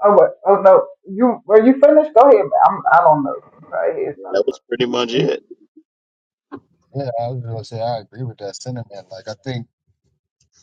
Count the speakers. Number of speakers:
three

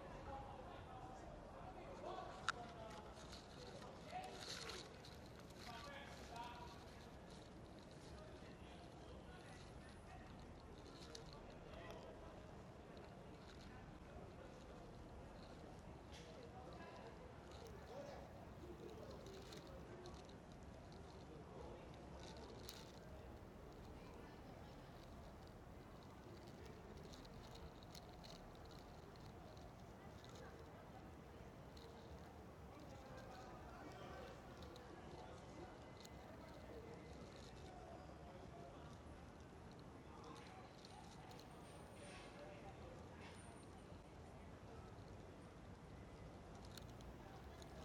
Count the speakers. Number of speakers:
zero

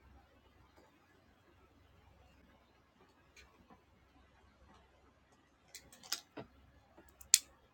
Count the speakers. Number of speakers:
zero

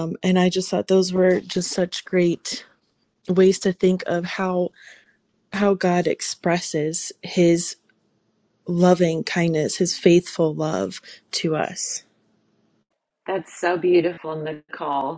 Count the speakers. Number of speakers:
two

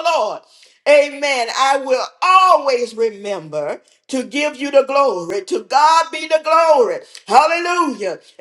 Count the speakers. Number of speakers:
one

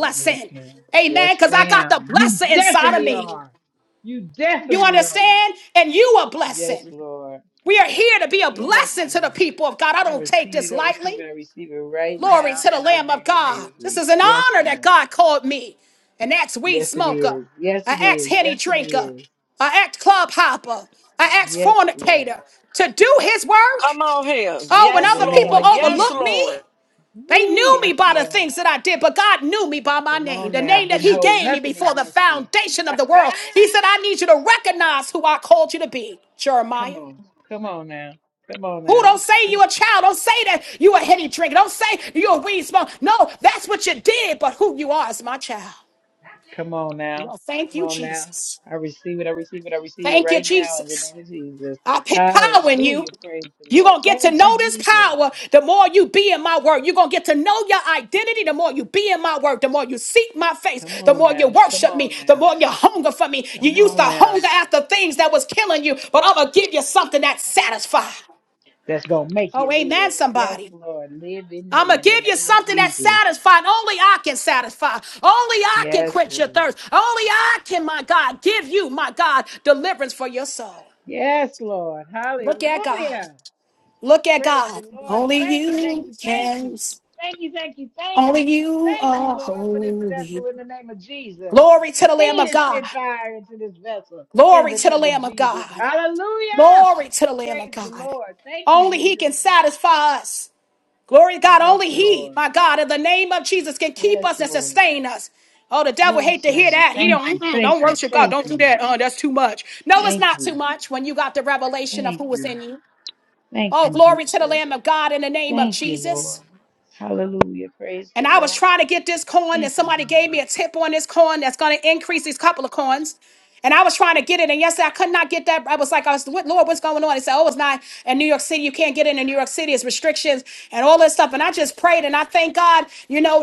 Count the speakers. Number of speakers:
three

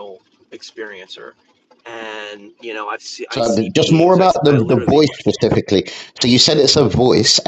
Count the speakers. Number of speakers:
two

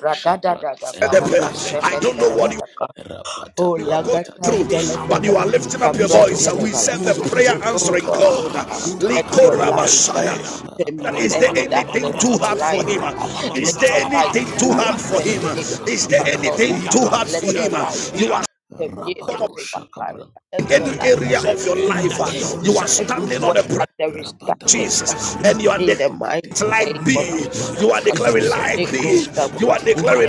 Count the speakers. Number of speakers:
three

